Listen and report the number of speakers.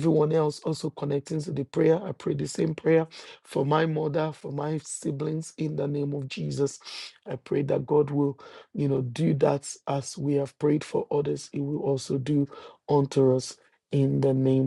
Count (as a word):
one